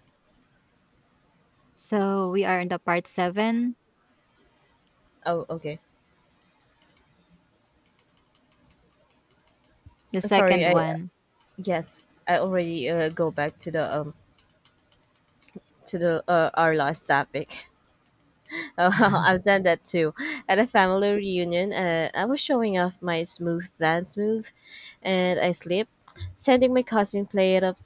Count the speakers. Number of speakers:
2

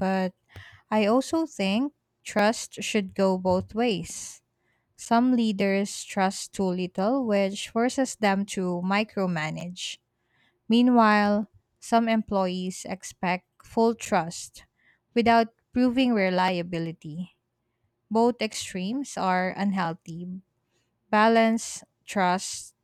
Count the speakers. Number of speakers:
1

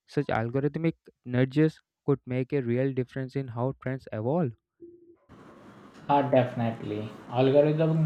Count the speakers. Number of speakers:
2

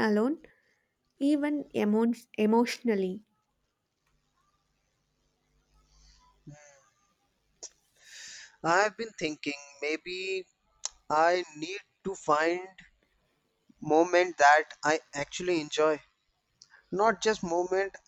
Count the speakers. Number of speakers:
2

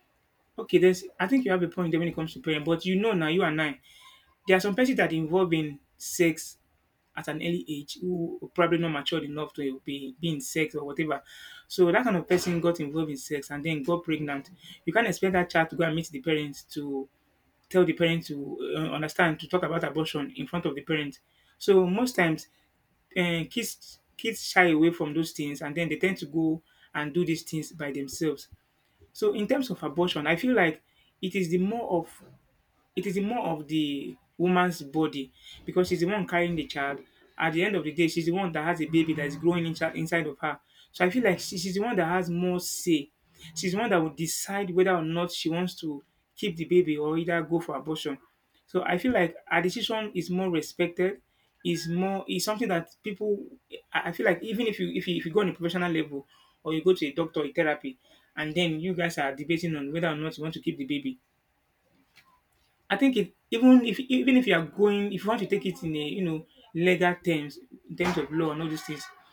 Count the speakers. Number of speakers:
1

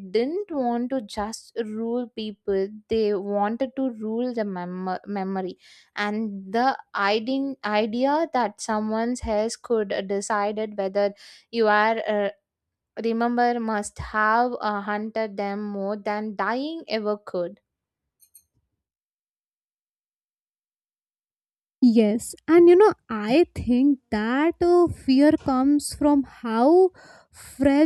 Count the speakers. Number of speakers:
2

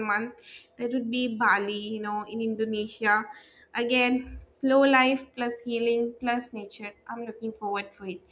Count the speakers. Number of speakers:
1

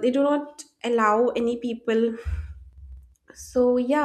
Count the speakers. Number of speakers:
1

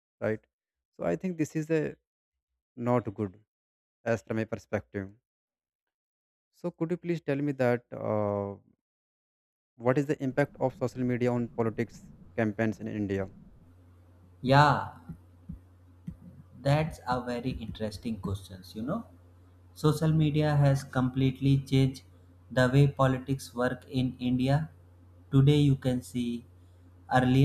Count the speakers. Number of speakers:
2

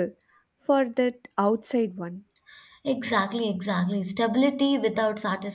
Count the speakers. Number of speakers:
2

